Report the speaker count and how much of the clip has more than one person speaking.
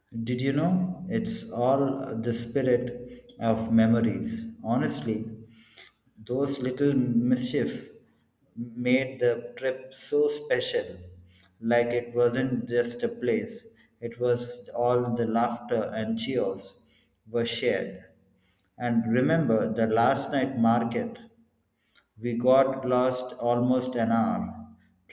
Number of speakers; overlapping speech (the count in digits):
1, no overlap